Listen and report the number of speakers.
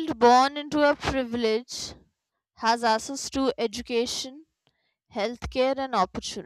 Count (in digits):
1